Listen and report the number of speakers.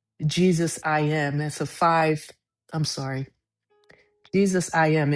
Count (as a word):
one